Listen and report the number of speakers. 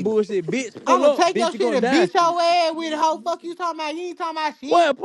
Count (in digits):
2